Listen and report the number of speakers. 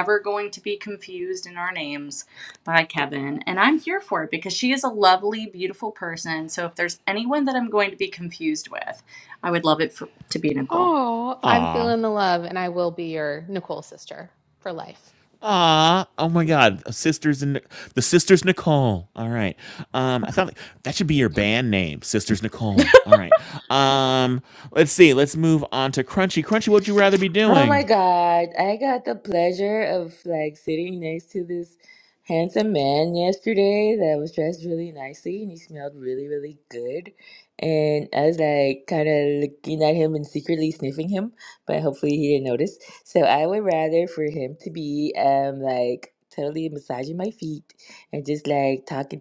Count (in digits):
4